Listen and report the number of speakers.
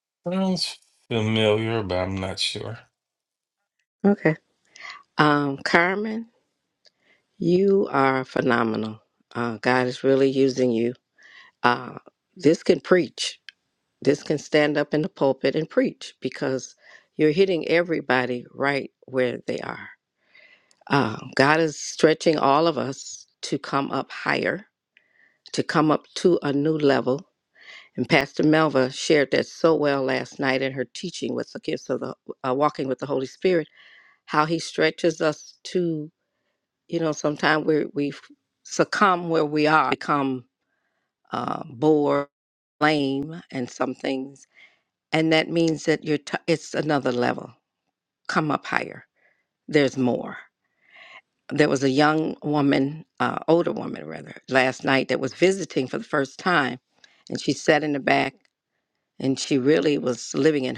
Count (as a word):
two